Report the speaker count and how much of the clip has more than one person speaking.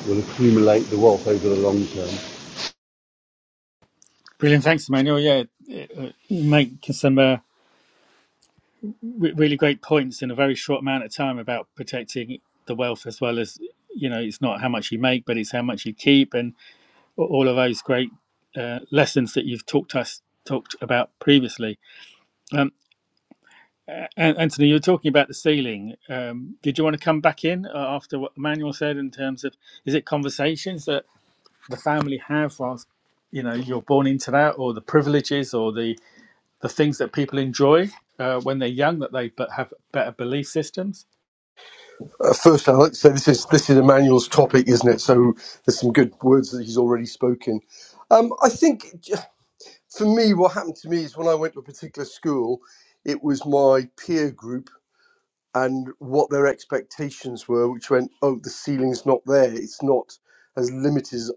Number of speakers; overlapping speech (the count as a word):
three, no overlap